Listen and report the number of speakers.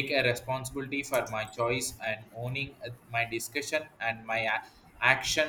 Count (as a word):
one